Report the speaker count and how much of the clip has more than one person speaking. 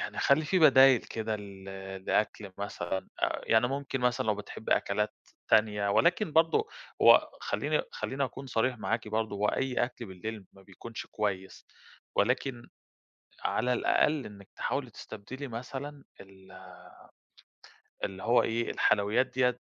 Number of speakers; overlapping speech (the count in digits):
1, no overlap